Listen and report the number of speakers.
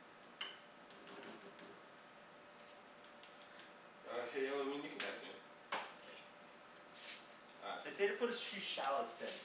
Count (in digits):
2